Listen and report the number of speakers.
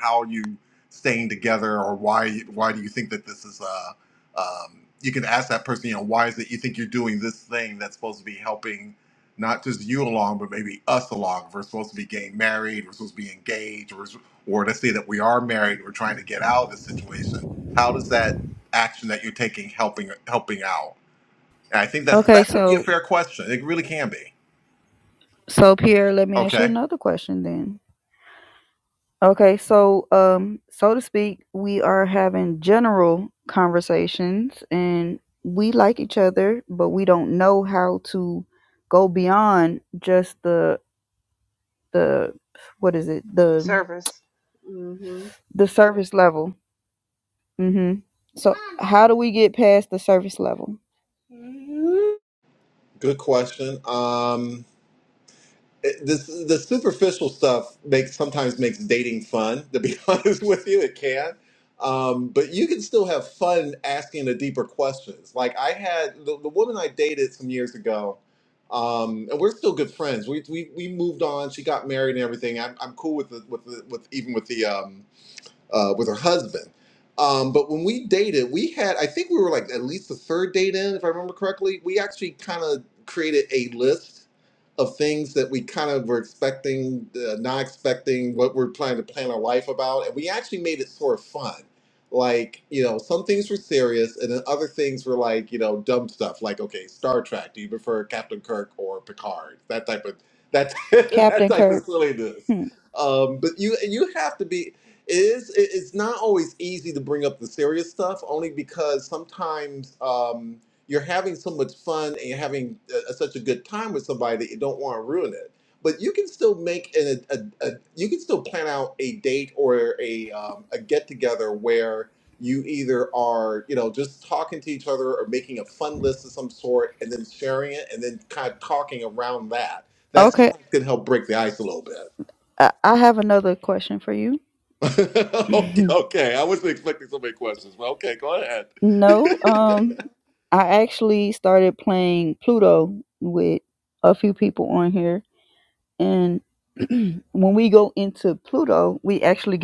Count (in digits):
3